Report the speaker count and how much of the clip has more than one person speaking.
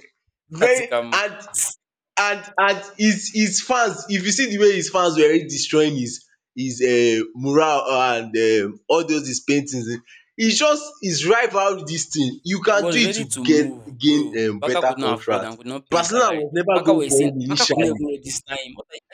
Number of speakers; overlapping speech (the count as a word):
two, about 29%